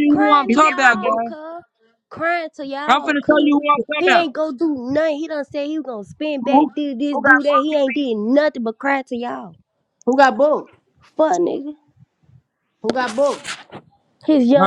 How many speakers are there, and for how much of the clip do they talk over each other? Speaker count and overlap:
three, about 19%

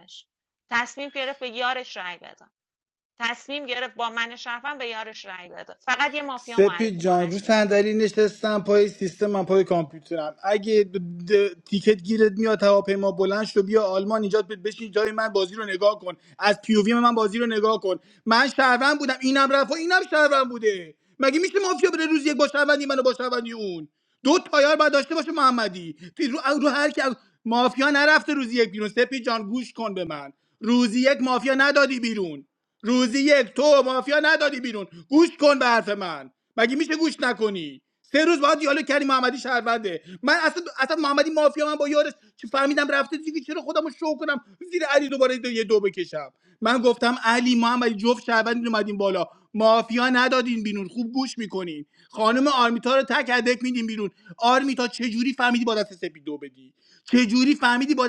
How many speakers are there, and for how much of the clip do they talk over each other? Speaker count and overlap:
two, about 2%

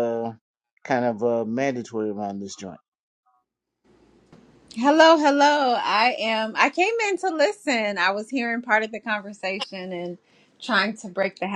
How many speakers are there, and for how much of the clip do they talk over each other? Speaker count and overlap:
two, no overlap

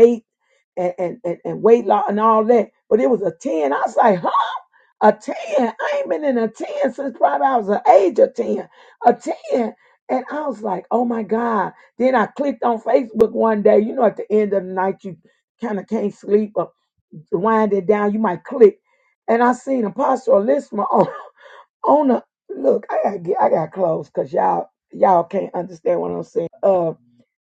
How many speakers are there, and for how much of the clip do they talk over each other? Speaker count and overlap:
one, no overlap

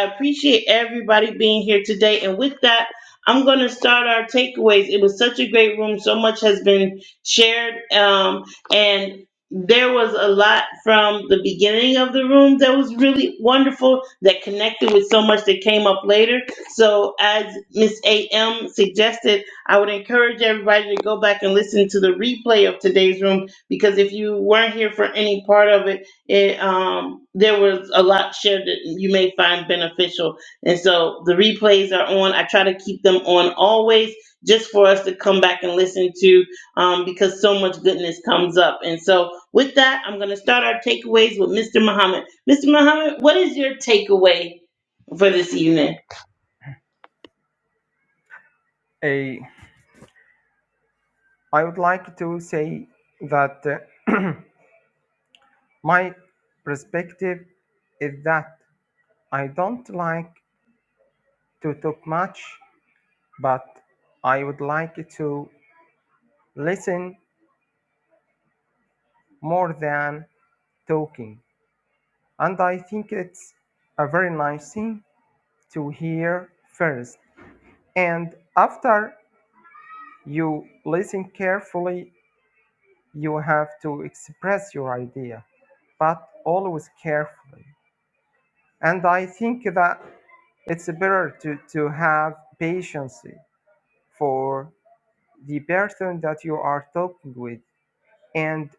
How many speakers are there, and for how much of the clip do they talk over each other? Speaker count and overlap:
two, no overlap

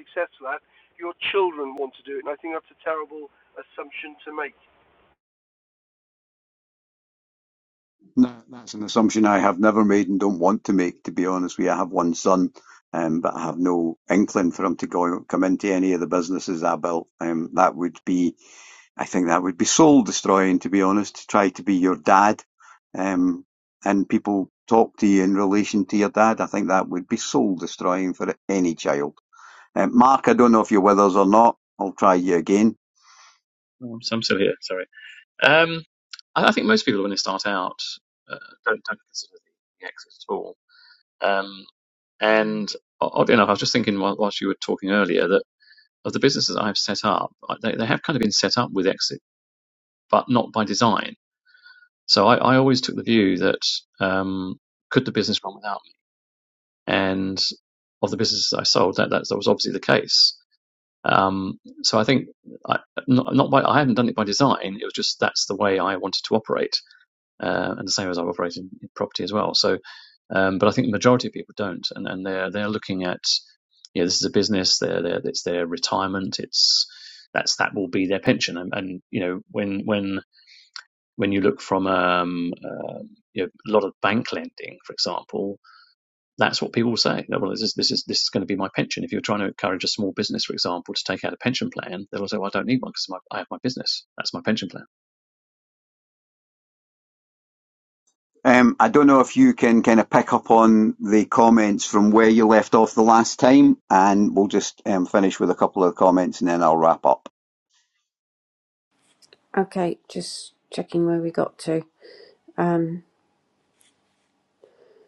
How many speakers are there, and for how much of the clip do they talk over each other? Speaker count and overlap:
four, no overlap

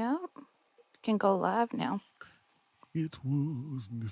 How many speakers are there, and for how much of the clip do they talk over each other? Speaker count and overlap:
two, no overlap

